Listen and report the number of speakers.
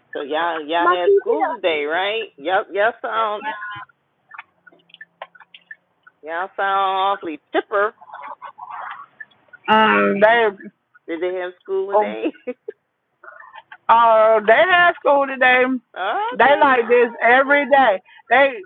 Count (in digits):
2